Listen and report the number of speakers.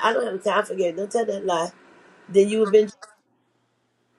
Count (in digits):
1